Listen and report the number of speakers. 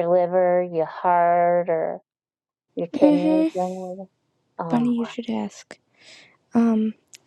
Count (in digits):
2